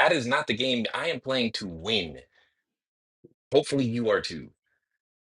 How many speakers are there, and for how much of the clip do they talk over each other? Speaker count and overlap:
one, no overlap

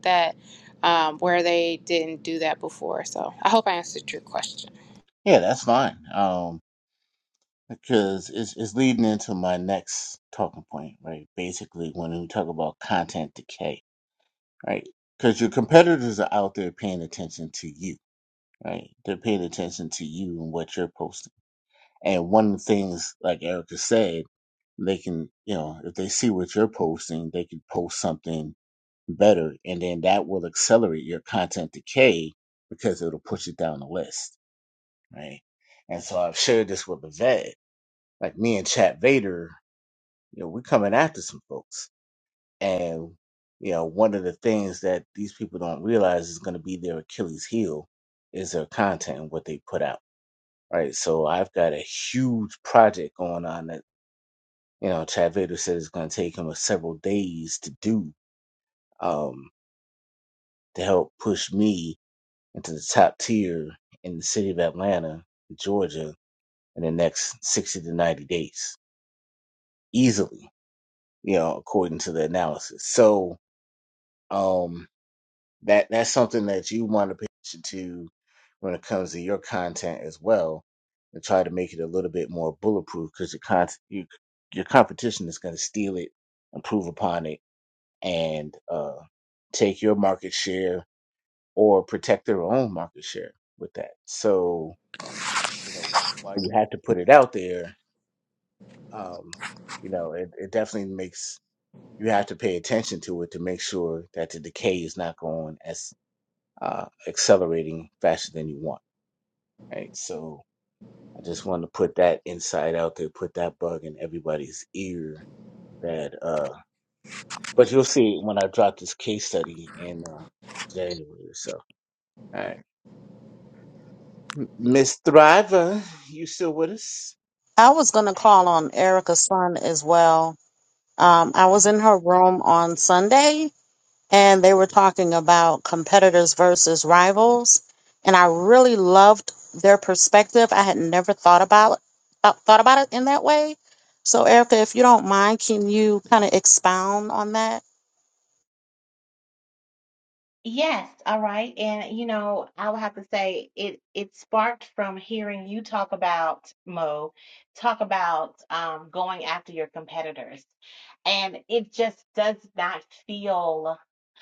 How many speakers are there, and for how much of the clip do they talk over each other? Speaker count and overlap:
four, under 1%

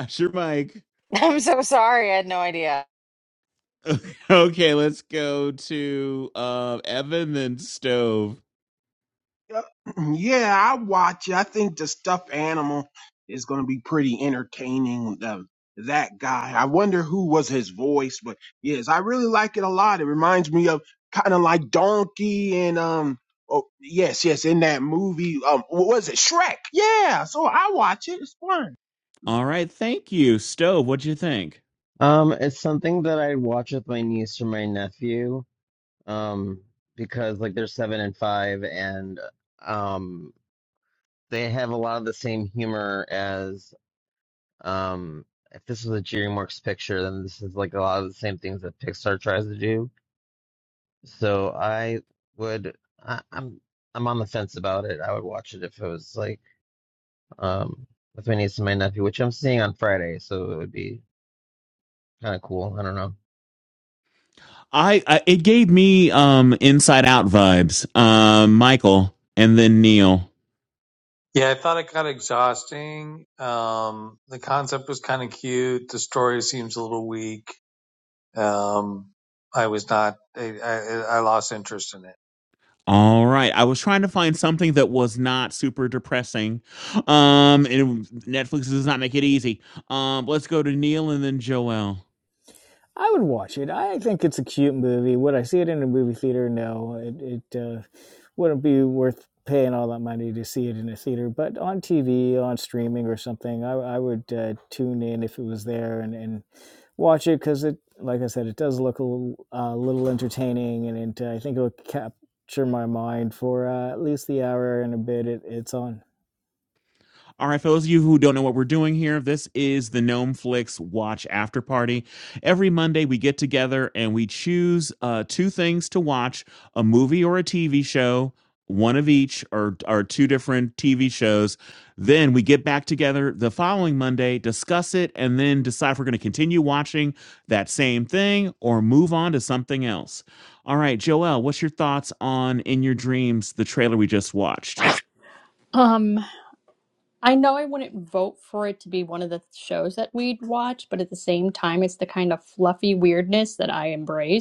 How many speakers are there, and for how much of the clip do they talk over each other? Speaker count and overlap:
seven, no overlap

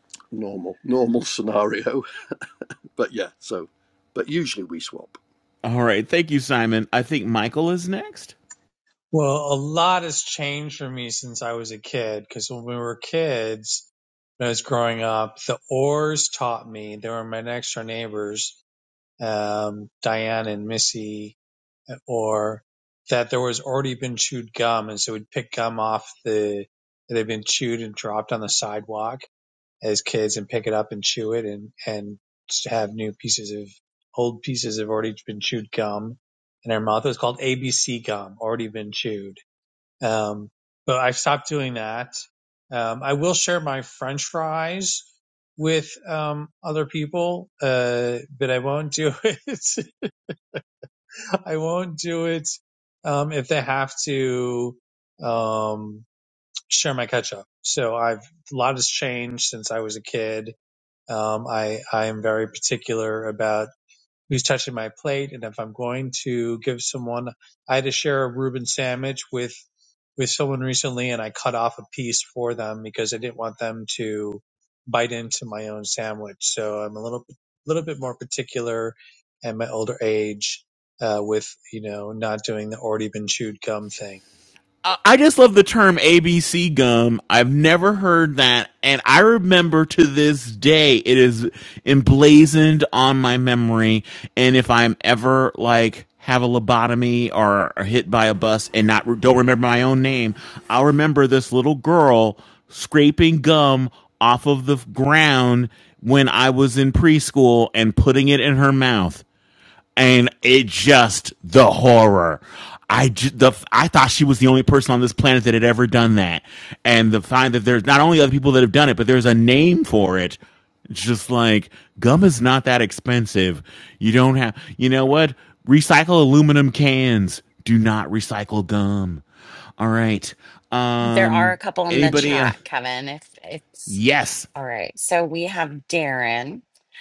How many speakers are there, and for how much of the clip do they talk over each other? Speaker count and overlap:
four, about 1%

